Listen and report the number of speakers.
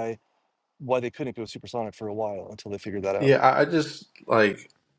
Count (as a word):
two